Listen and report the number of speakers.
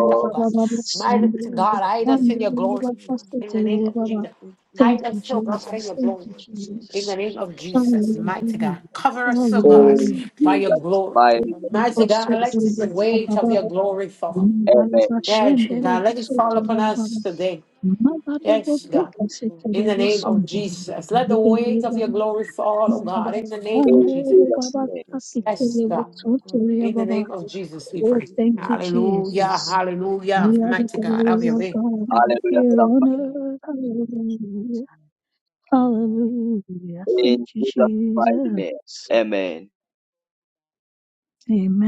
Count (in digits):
4